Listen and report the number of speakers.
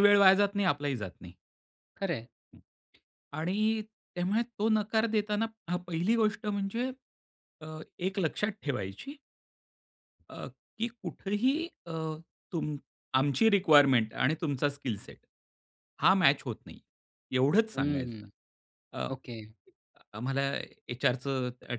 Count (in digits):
2